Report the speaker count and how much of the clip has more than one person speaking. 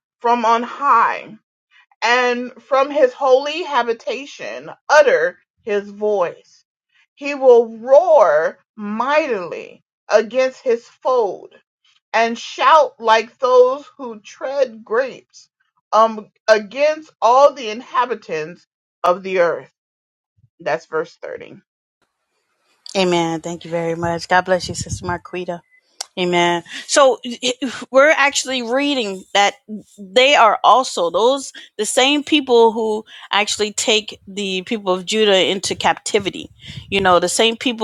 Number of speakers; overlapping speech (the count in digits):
2, no overlap